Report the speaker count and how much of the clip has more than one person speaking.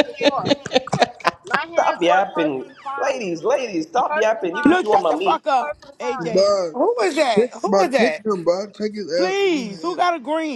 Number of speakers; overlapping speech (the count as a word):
five, about 51%